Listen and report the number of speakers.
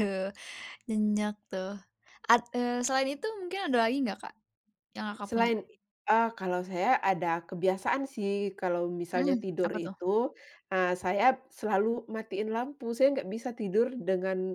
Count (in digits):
2